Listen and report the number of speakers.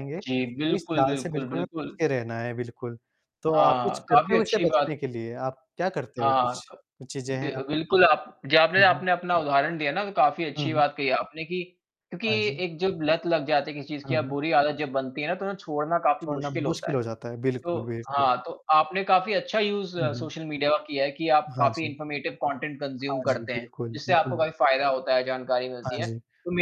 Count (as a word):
two